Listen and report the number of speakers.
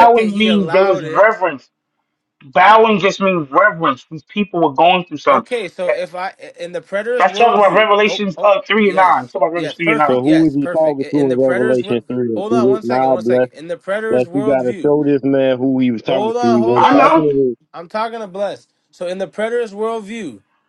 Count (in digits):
3